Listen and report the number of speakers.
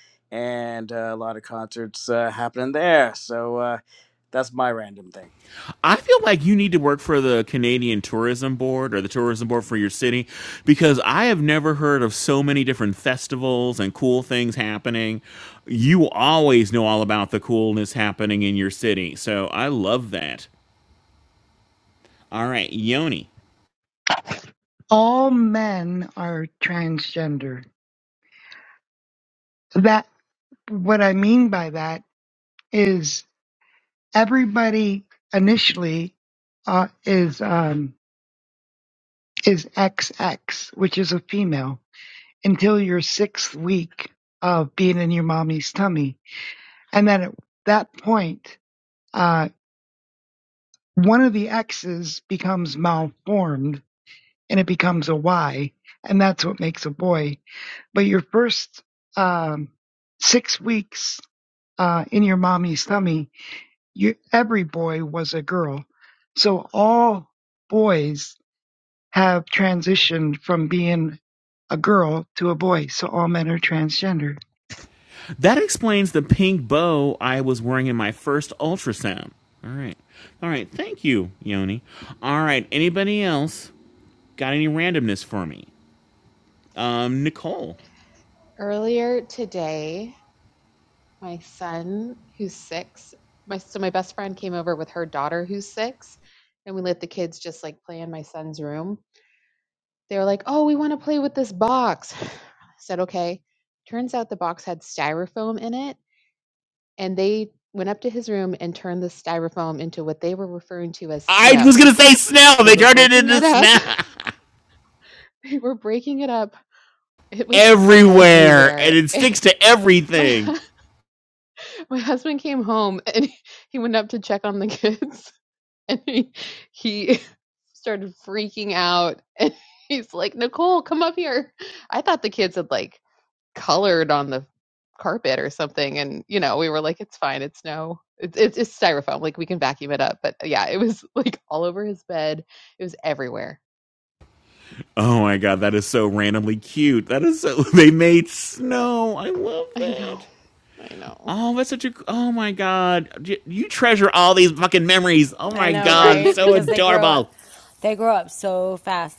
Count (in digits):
5